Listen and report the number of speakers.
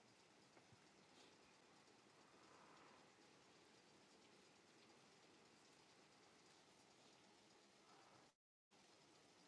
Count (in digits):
0